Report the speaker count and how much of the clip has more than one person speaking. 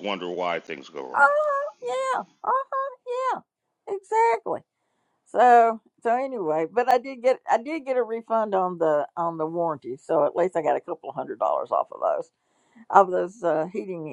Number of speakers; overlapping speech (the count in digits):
2, about 1%